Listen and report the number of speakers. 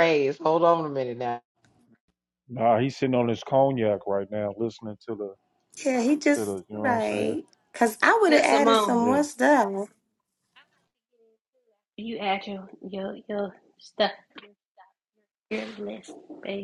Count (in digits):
4